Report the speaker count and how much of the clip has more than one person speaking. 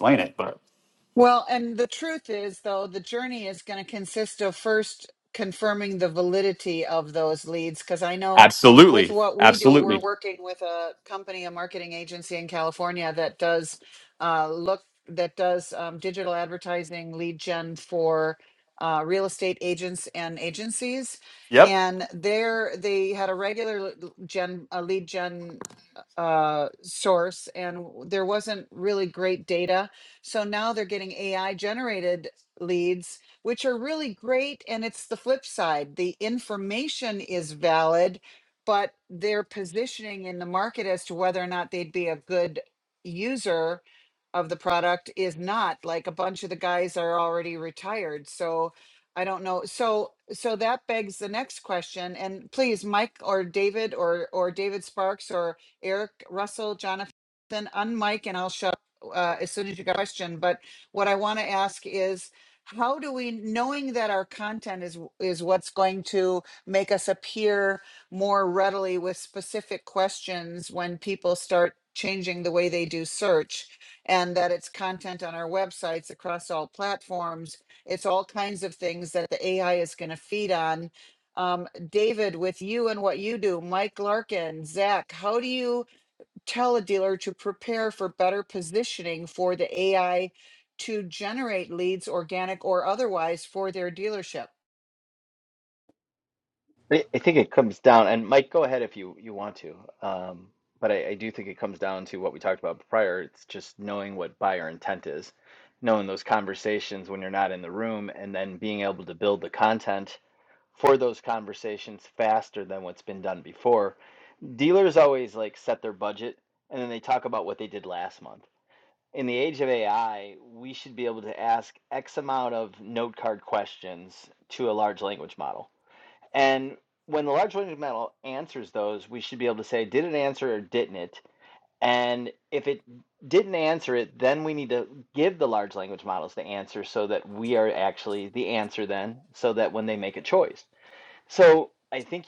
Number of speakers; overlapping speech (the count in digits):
3, about 1%